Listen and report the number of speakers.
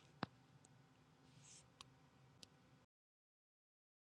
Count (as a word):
zero